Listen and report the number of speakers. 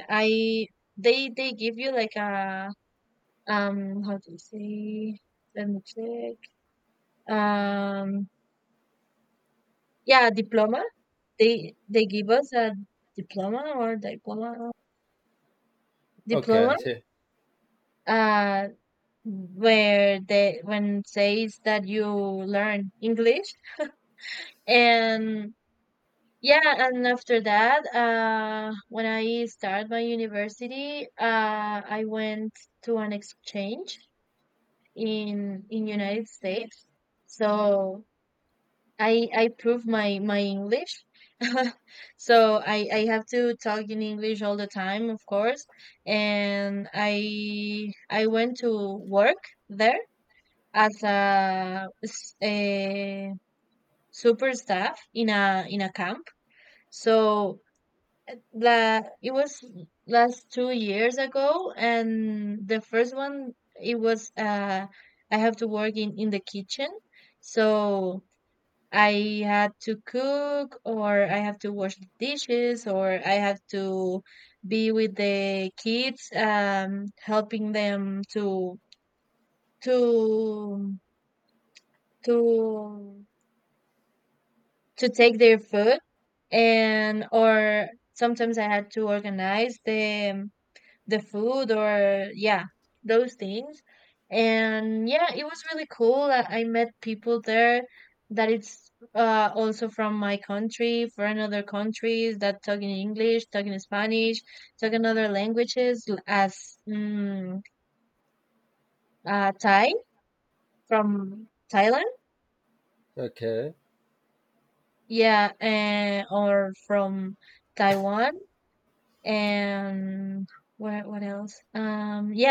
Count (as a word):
two